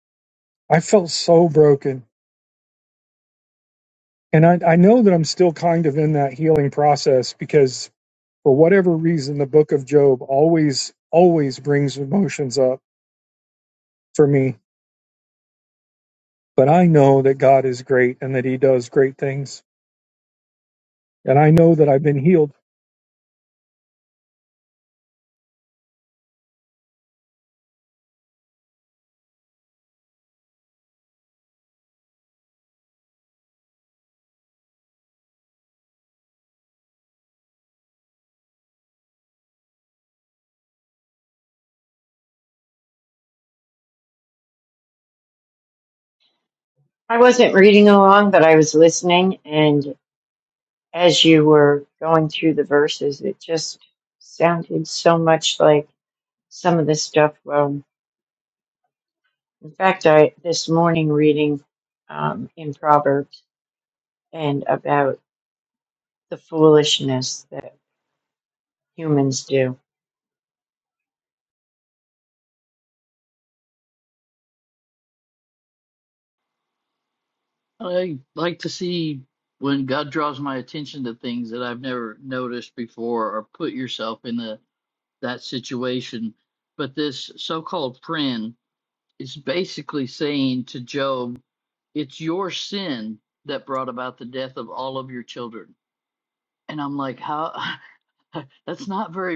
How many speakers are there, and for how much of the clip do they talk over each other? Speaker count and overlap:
3, no overlap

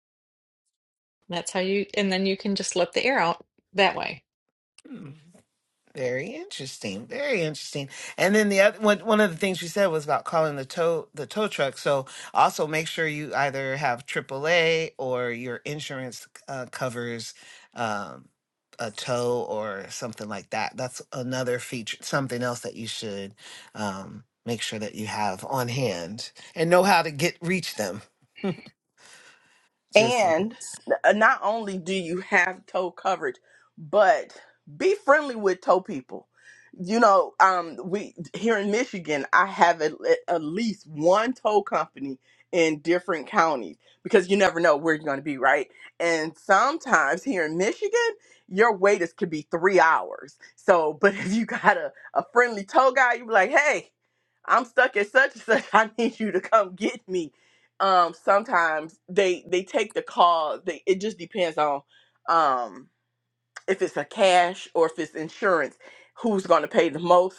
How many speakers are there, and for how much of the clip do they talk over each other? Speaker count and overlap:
3, about 1%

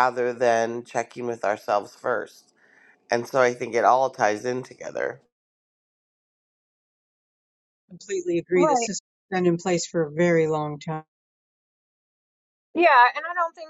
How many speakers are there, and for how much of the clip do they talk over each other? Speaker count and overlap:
3, about 2%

